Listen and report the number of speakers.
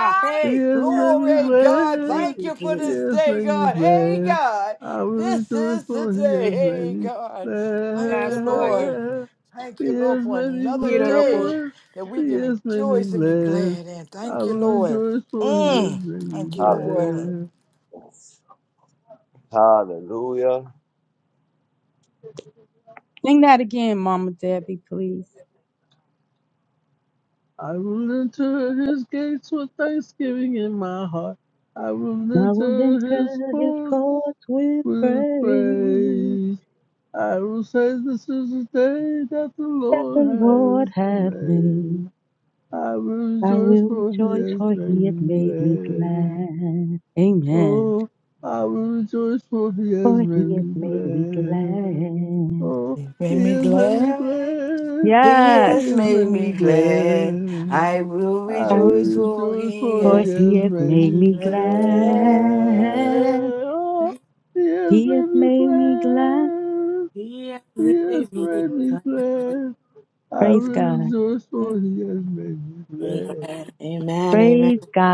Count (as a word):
five